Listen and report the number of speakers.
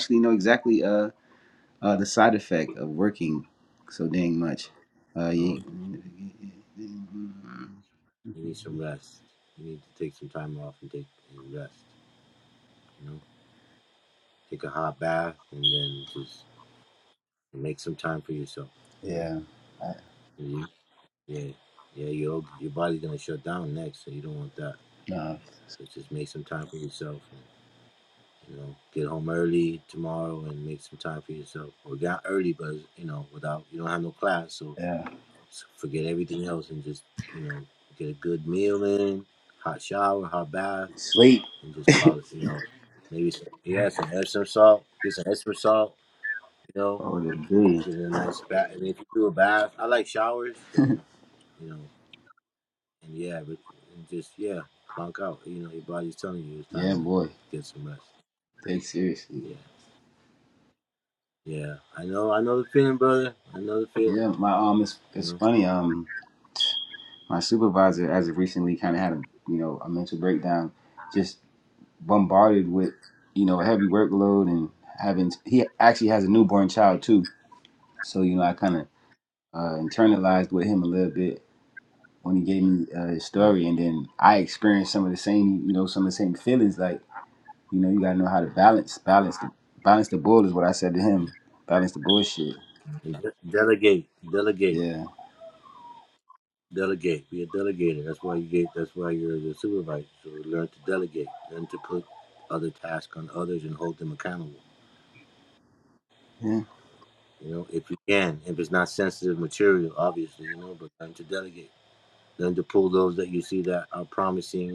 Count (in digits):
2